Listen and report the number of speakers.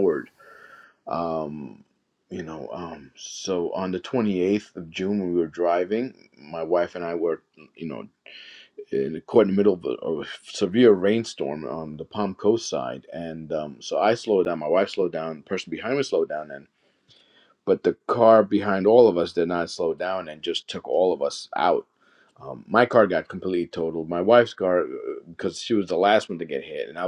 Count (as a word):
one